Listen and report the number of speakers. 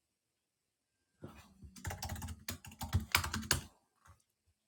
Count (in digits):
0